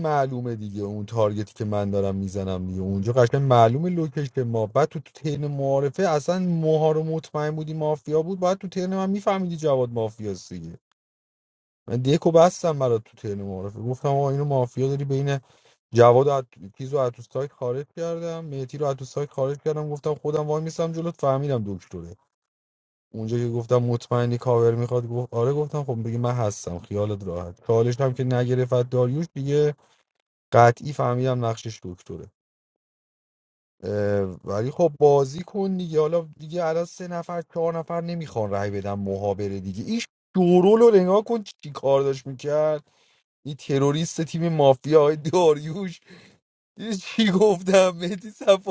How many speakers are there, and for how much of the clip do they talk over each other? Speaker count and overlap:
1, no overlap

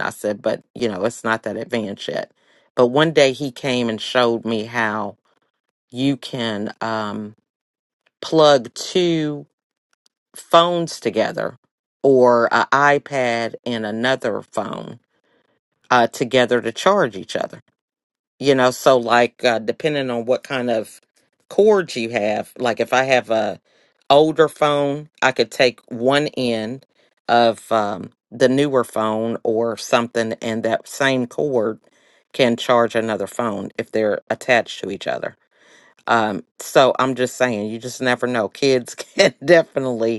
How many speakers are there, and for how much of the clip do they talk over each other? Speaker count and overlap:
1, no overlap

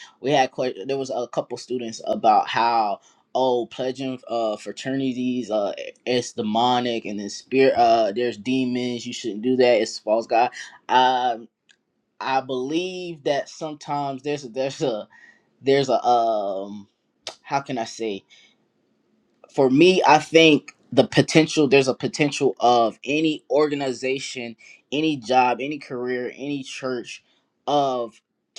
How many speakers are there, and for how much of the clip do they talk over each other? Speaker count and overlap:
1, no overlap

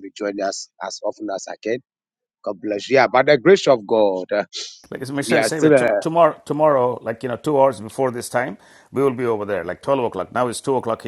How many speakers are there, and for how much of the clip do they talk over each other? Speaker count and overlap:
2, about 7%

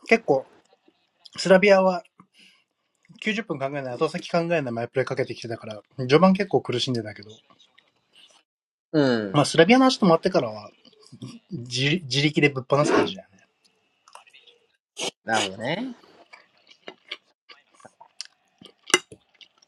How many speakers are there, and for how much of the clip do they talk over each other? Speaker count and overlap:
2, under 1%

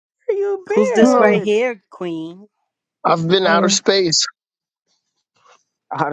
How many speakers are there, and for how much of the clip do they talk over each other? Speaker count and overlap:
3, about 18%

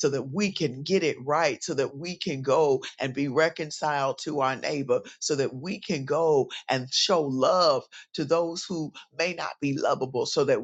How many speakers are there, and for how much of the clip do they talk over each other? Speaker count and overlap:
1, no overlap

